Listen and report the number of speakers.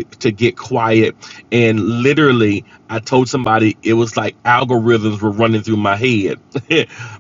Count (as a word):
one